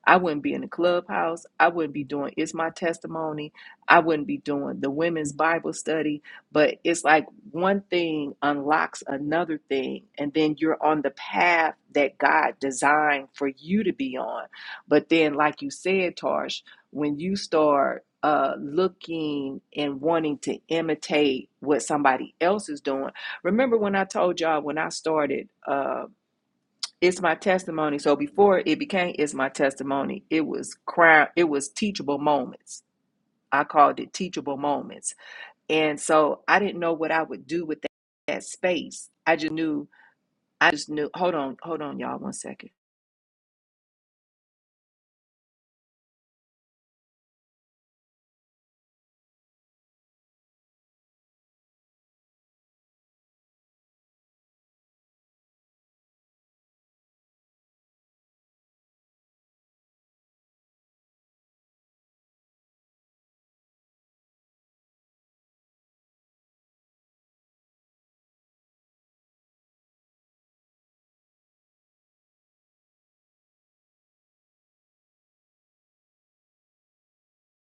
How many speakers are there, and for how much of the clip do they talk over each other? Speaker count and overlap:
1, no overlap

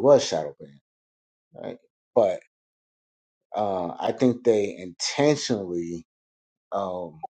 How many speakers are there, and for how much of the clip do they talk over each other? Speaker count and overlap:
1, no overlap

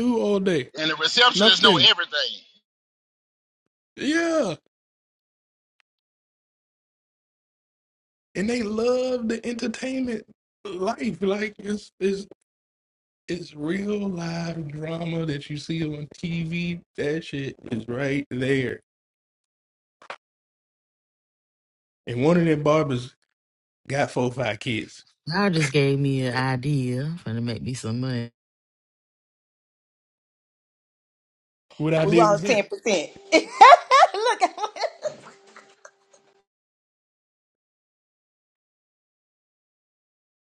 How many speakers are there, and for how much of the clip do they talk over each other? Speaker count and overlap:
4, about 3%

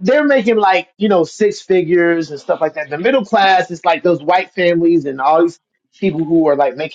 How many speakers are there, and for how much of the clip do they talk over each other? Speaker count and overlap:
1, no overlap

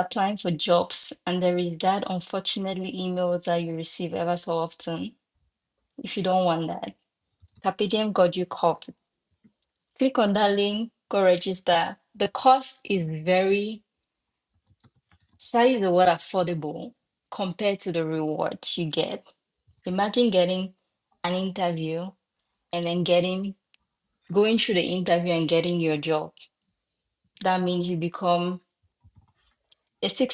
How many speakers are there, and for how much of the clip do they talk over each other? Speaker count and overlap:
1, no overlap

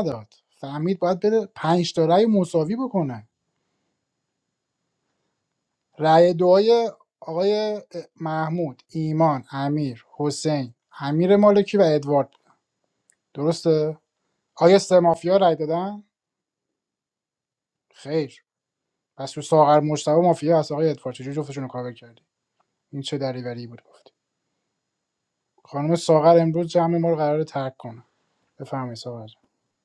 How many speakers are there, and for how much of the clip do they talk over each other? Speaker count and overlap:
1, no overlap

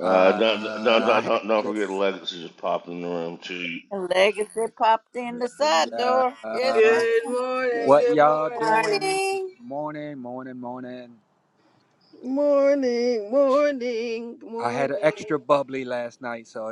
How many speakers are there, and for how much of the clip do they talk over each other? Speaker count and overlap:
4, about 34%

